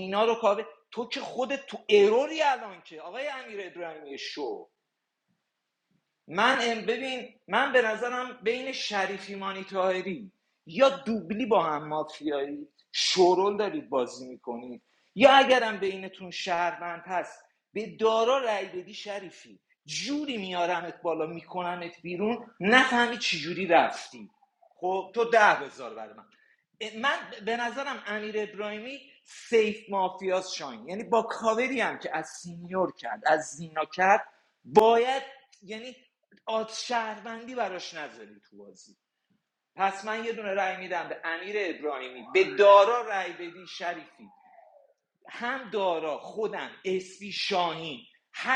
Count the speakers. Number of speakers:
1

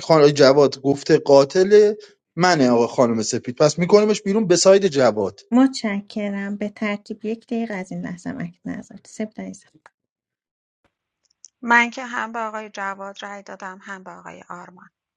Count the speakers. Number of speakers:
3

